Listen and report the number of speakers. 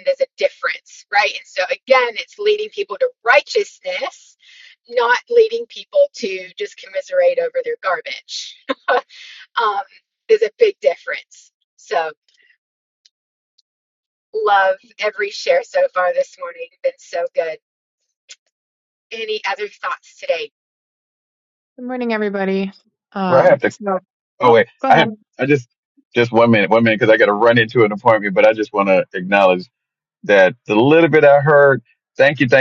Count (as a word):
three